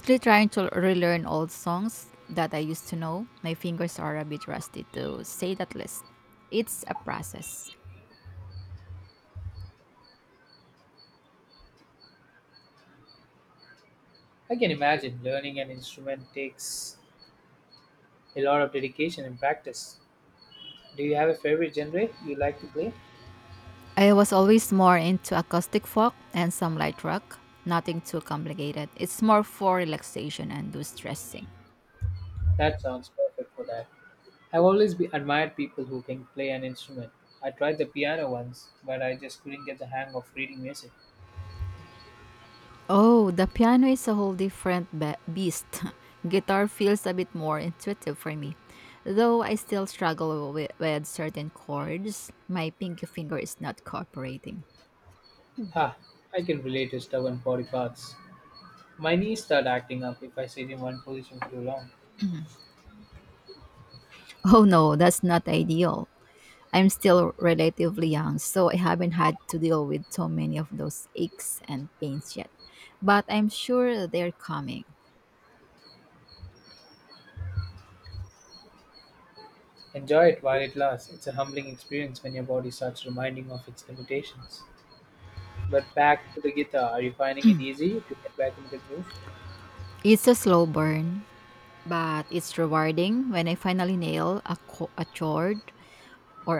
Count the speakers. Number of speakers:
two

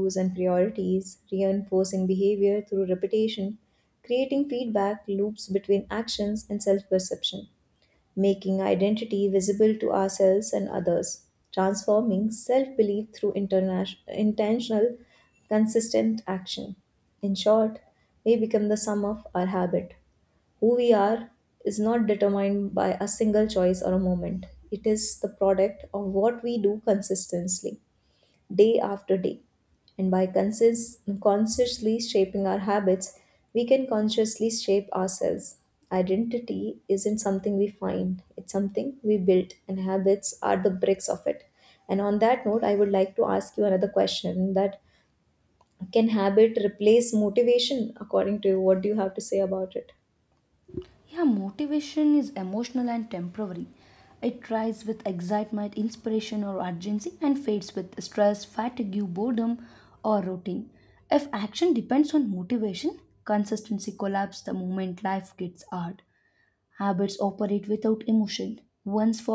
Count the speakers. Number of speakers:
two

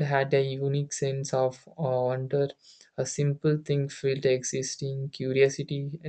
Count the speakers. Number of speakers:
one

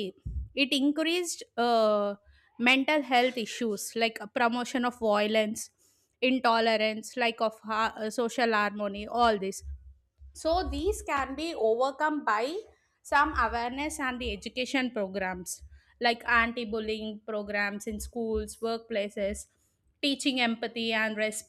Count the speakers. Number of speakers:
one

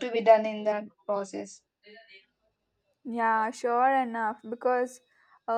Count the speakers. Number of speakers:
two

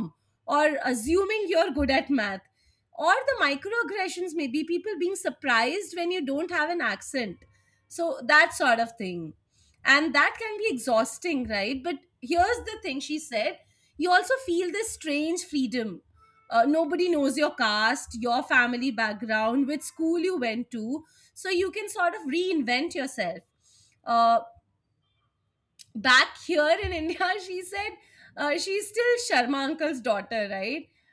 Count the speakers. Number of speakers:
one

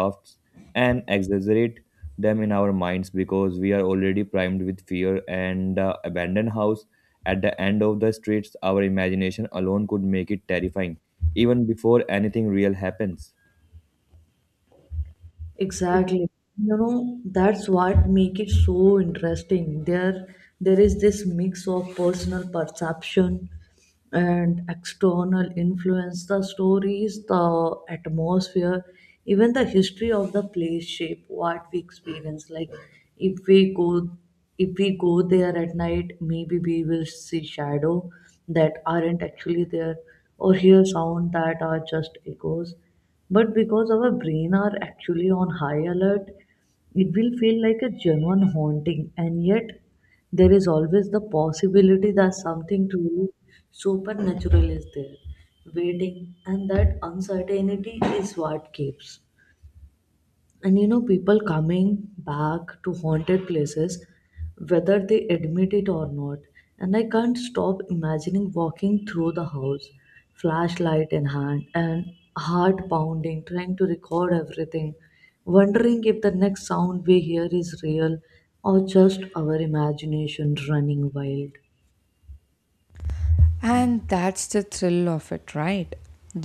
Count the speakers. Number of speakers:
three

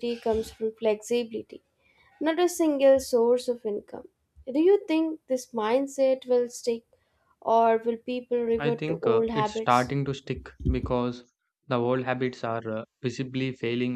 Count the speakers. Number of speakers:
two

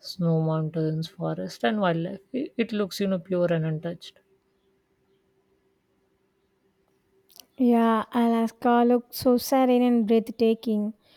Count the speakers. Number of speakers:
two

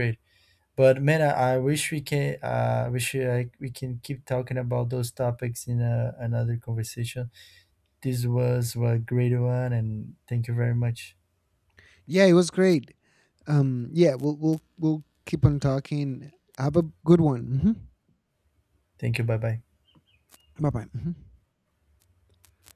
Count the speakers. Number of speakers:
two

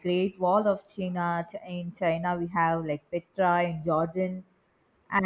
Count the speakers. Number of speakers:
one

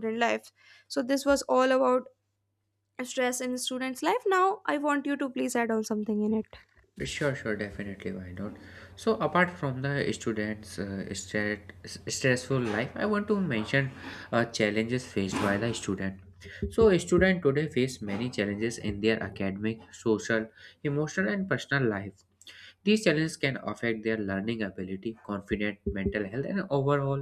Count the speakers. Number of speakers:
two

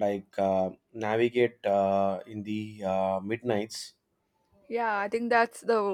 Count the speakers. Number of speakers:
two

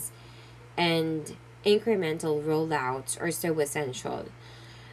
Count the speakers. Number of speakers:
one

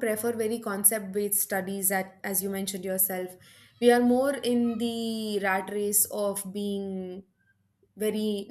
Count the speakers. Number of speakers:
one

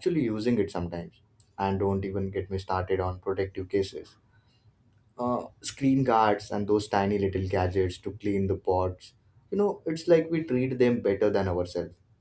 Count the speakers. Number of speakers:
one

